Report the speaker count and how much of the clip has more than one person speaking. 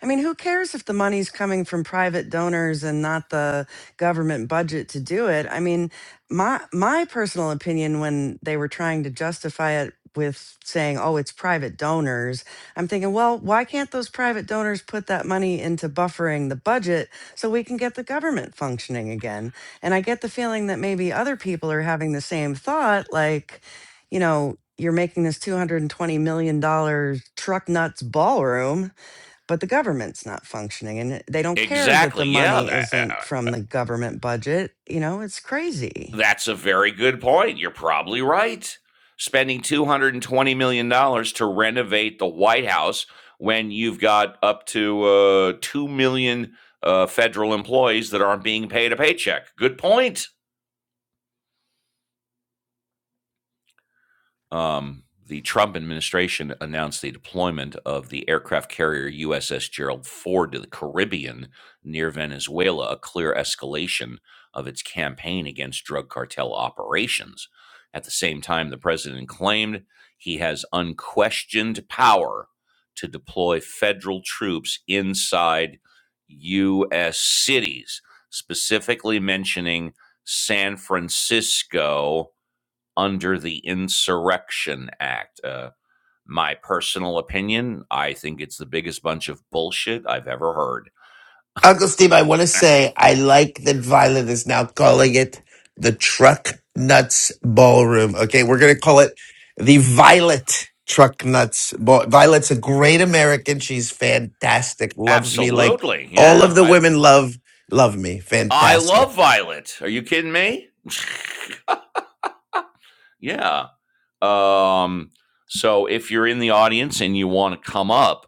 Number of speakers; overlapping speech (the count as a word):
three, about 3%